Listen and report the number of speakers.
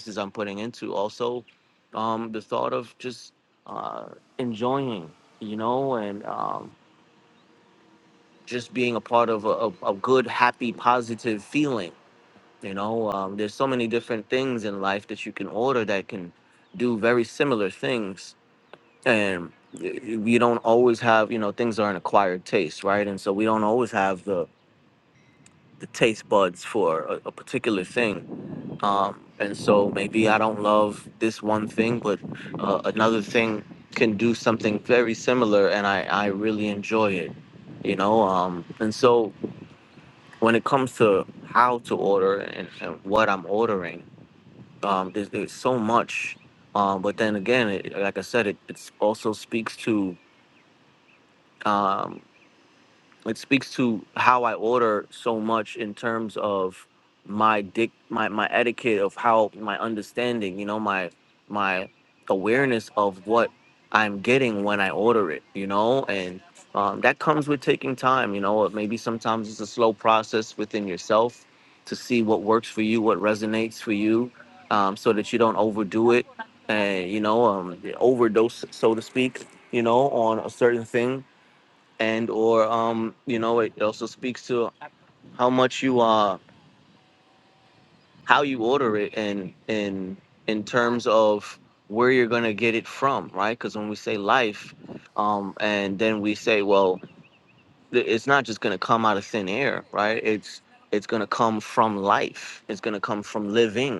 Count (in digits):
1